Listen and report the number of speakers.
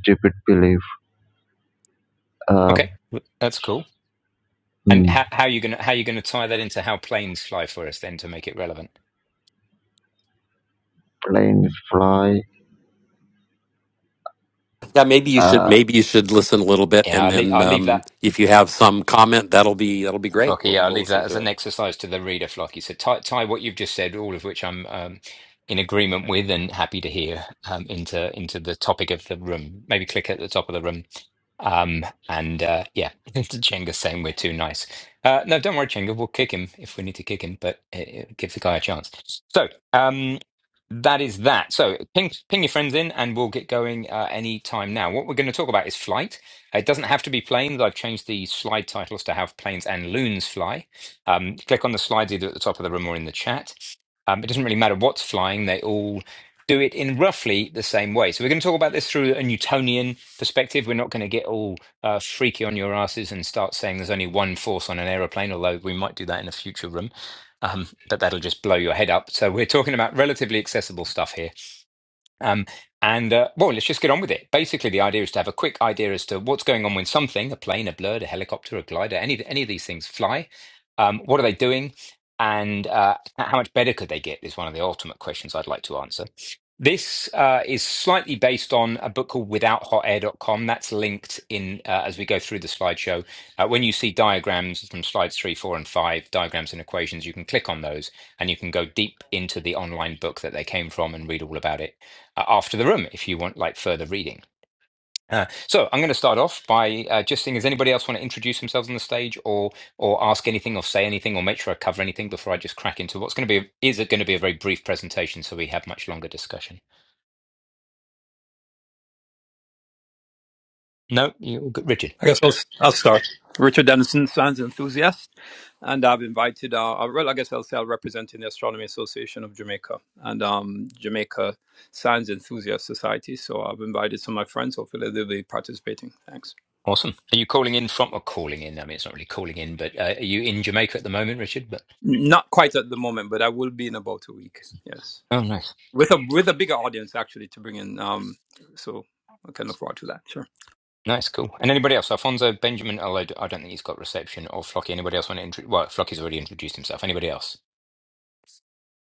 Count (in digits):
4